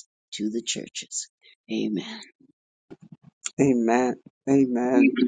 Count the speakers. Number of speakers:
two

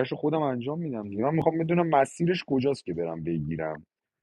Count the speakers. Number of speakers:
one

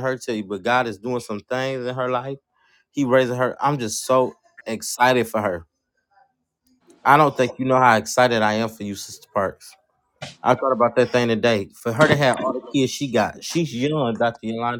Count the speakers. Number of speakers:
one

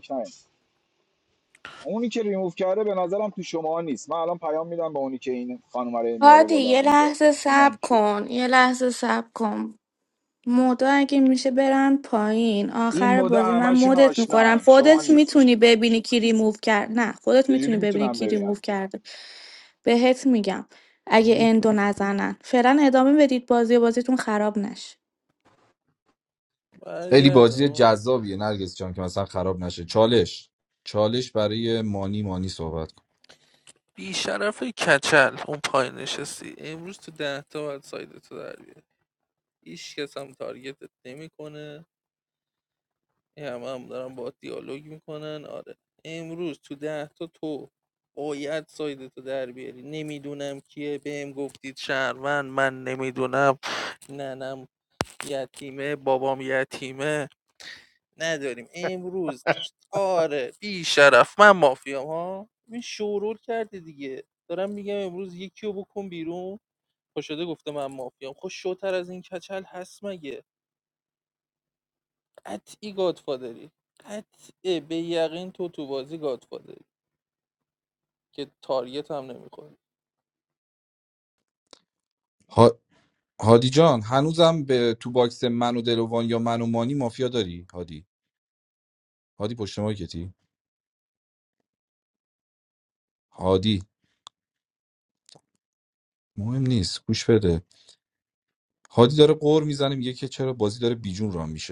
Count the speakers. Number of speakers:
four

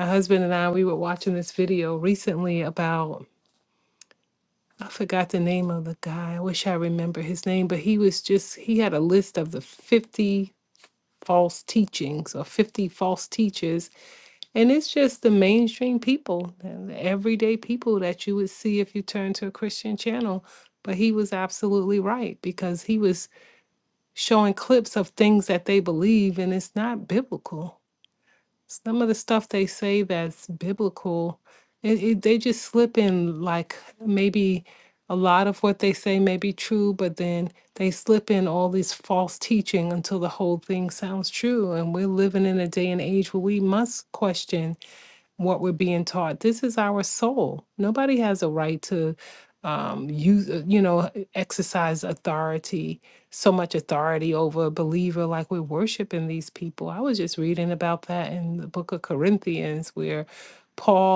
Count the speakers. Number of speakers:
one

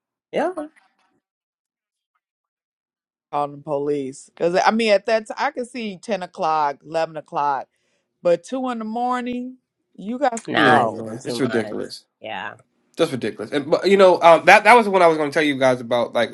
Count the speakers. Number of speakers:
three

